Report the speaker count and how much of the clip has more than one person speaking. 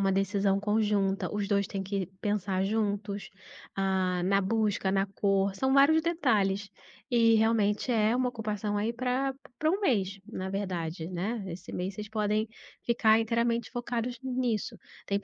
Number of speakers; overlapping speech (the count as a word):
one, no overlap